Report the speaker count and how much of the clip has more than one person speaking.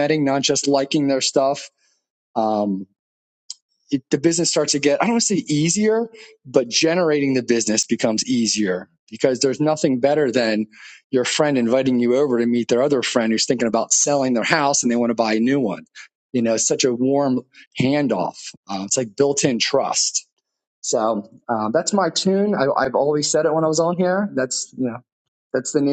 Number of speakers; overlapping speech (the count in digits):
1, no overlap